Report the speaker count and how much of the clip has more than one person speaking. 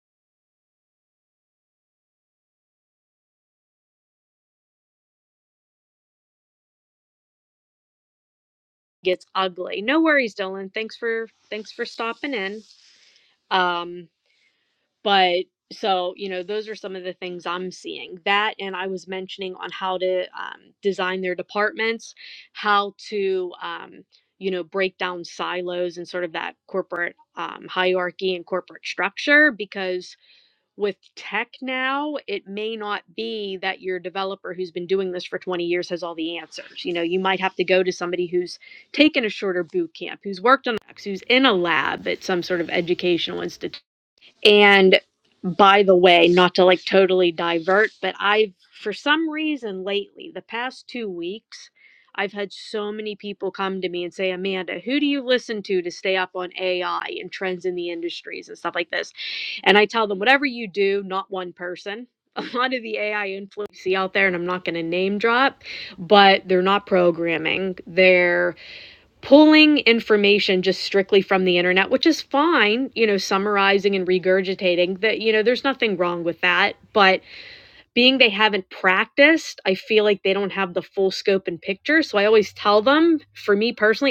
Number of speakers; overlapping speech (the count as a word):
one, no overlap